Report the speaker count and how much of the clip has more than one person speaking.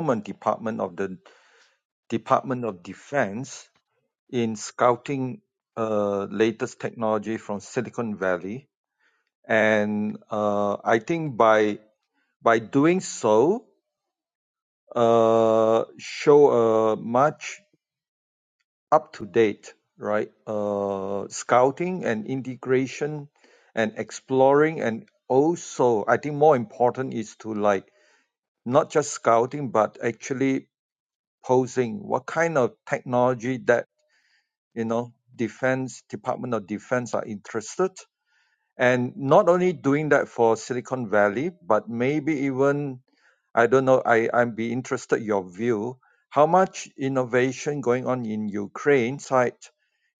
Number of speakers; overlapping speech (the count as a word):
one, no overlap